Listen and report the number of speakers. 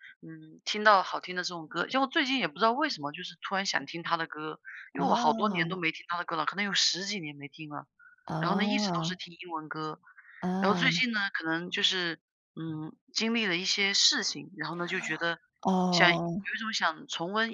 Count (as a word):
two